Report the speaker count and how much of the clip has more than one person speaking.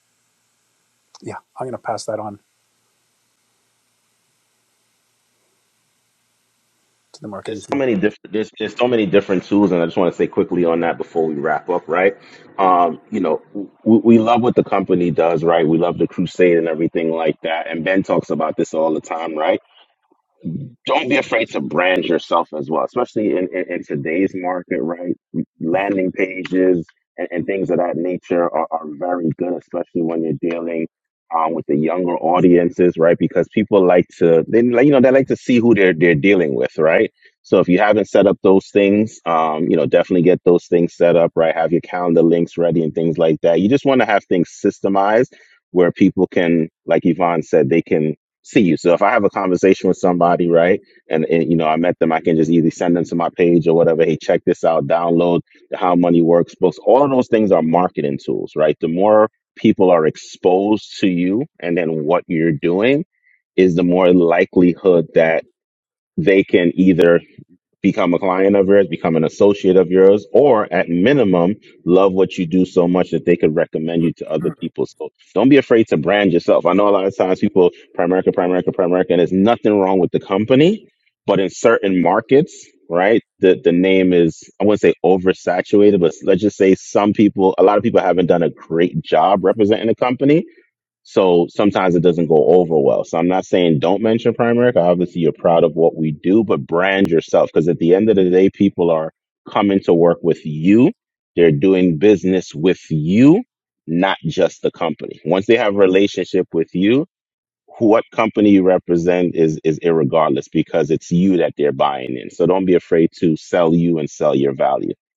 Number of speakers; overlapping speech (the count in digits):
2, about 1%